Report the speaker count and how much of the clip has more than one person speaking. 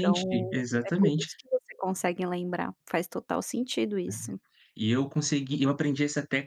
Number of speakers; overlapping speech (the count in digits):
2, about 15%